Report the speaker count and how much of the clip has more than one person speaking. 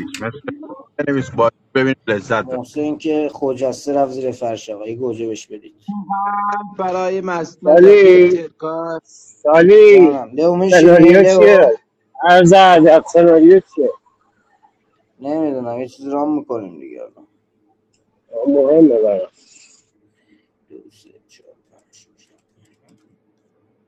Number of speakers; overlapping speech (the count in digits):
4, about 9%